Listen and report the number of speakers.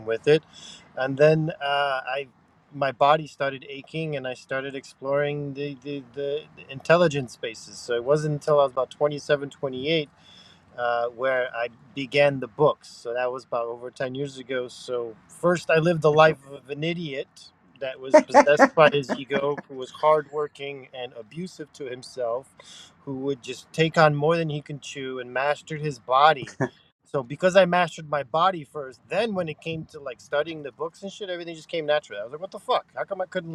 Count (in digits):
1